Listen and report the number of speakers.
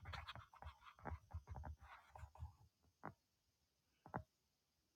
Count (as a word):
zero